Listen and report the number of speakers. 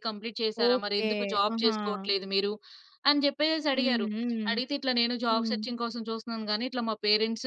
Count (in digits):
2